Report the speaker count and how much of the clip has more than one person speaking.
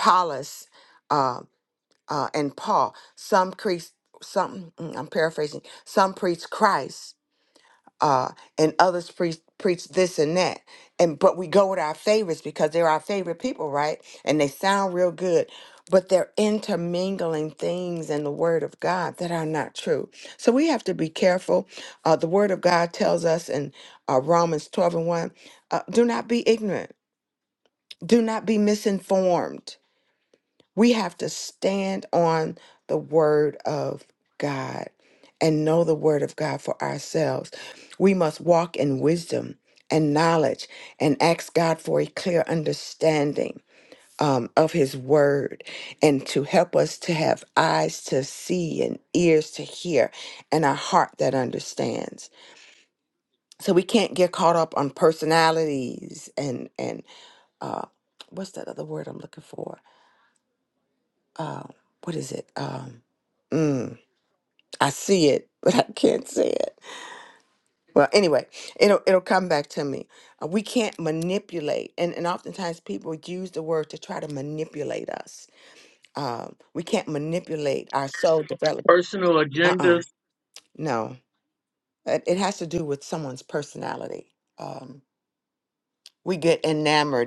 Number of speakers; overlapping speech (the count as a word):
two, about 1%